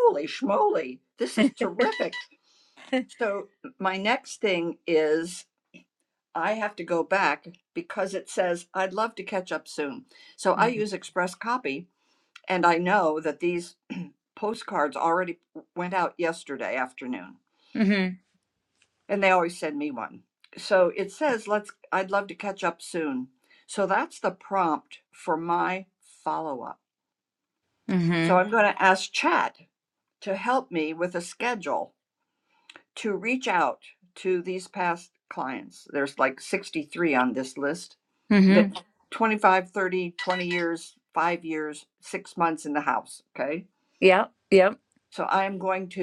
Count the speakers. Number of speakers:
2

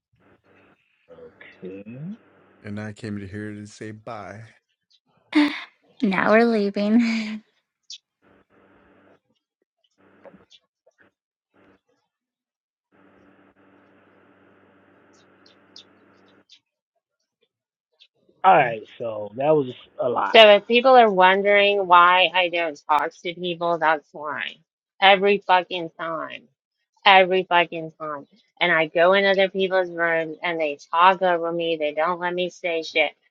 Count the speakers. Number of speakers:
4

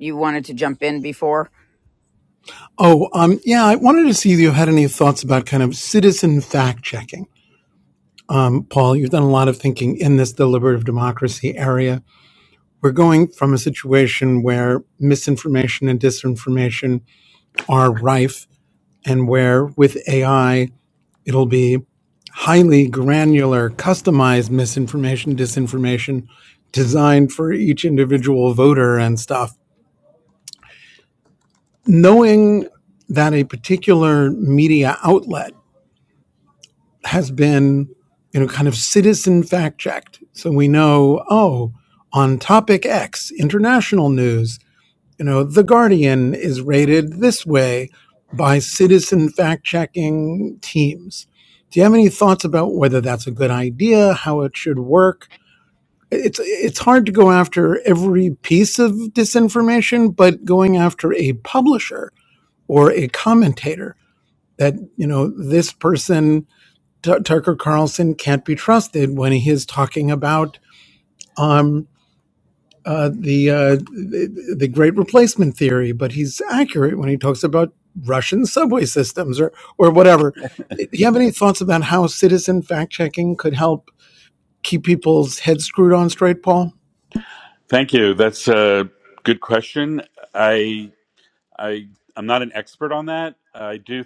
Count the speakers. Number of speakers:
3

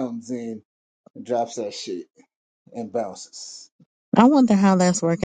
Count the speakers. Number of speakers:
2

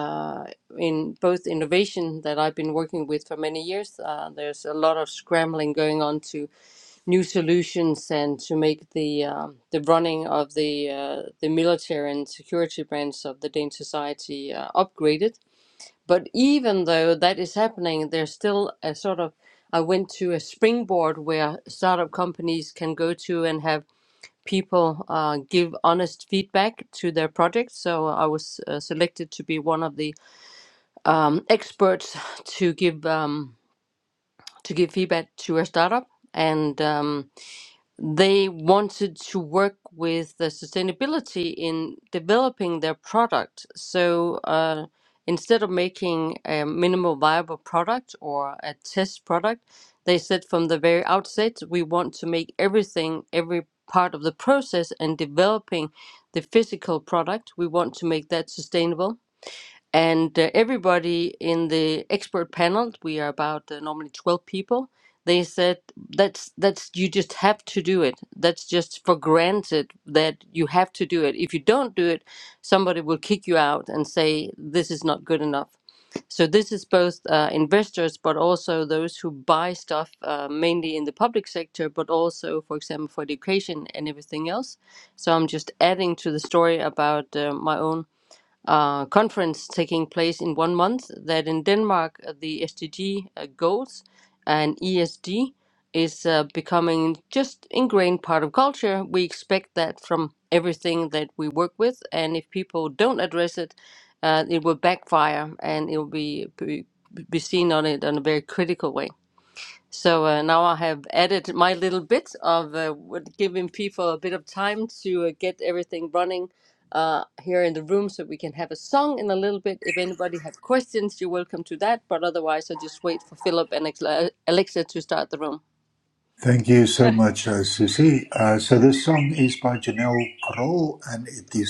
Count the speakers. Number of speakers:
2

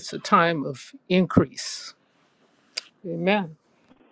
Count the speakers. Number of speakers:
1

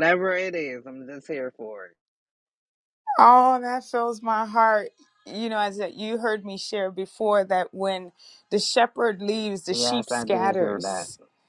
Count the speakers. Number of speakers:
2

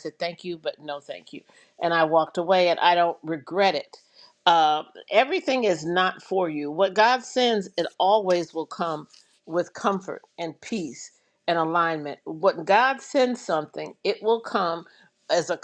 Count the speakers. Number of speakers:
1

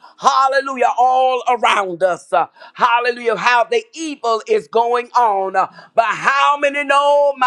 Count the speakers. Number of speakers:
1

